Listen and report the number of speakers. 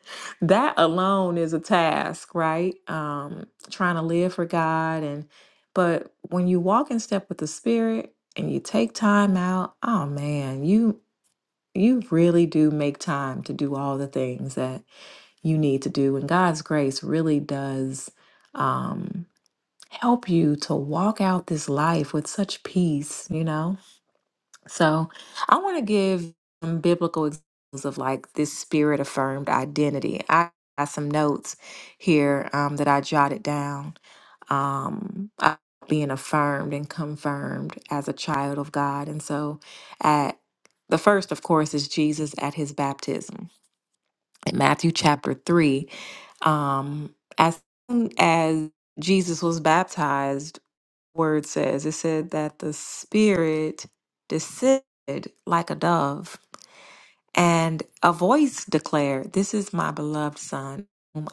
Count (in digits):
1